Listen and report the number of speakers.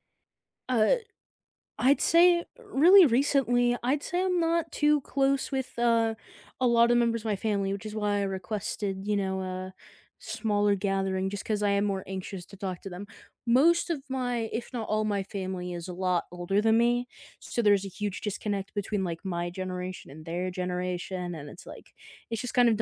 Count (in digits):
1